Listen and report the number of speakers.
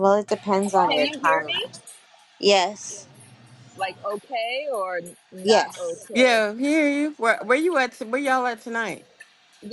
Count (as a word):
three